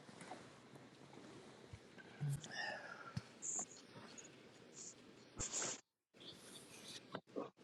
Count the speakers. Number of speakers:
zero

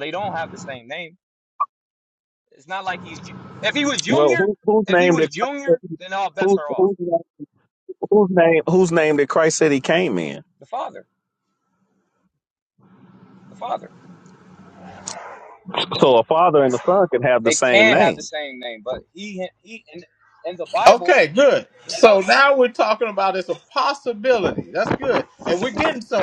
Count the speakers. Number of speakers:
three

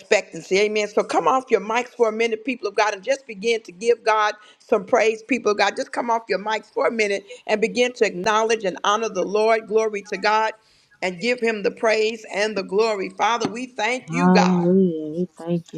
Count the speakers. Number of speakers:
two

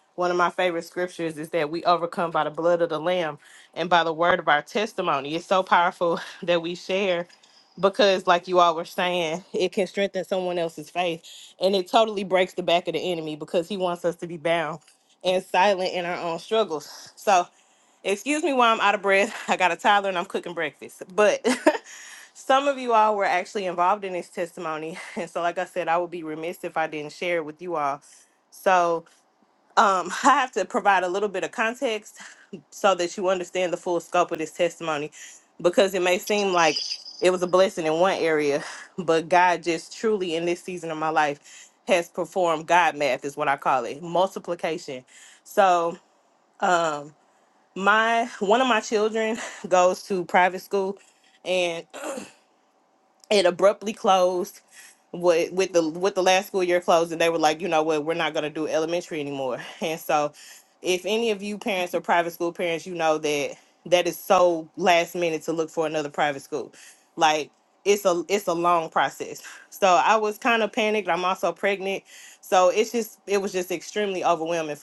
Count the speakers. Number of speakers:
one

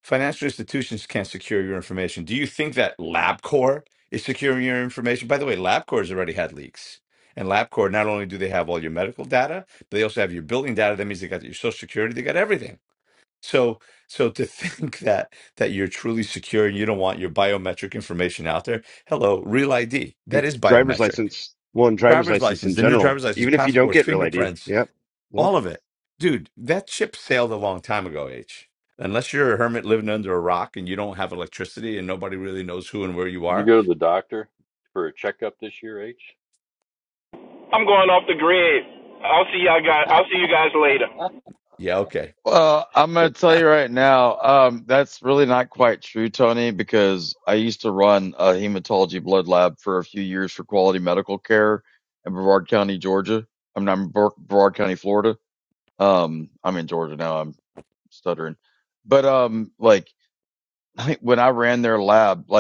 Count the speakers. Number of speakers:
five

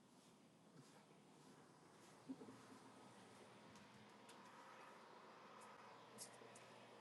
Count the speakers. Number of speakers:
zero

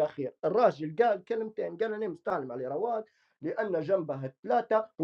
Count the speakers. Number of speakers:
one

